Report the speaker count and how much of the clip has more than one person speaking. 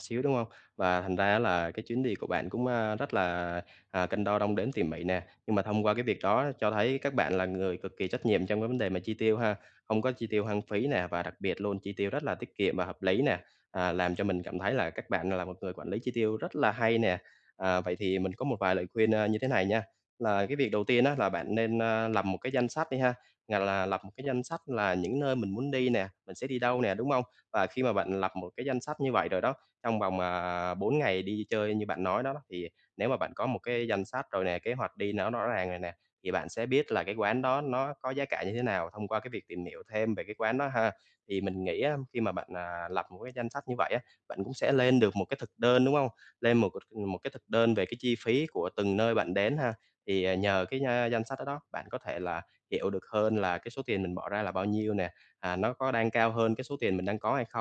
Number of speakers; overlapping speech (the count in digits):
1, no overlap